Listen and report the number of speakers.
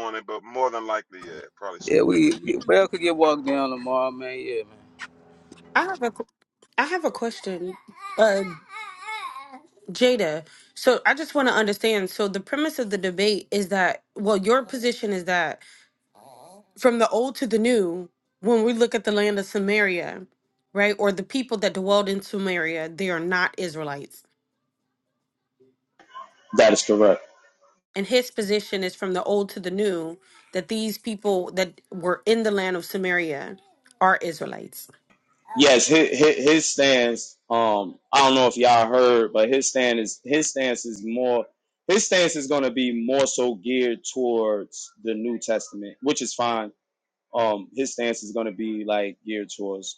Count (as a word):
four